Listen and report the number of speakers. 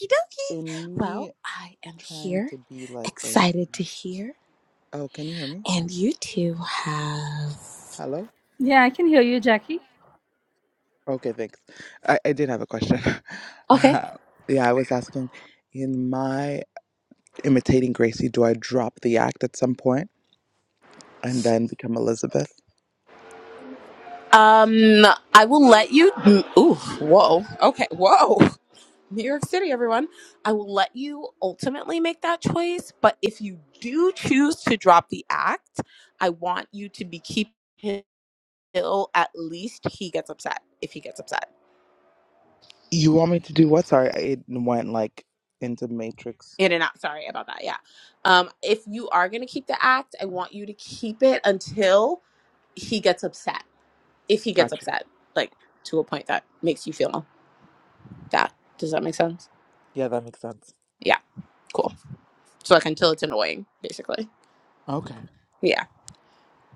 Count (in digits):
3